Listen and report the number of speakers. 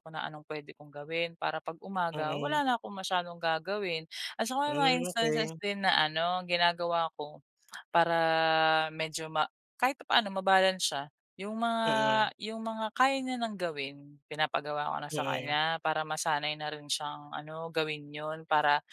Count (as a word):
two